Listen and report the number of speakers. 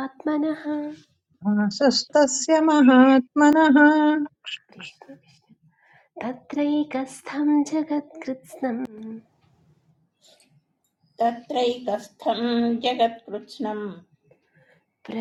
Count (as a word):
three